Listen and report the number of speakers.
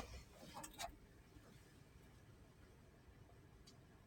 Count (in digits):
0